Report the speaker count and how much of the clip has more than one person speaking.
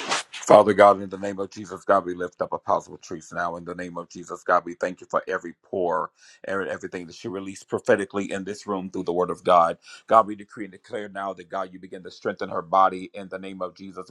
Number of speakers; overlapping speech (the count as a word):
one, no overlap